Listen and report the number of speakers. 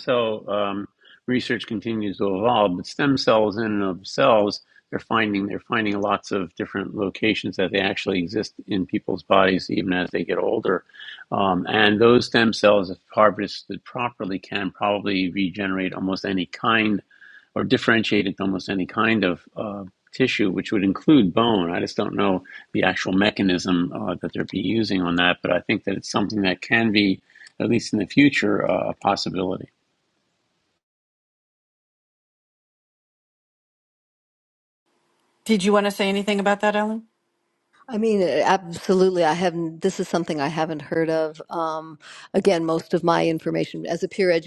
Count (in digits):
3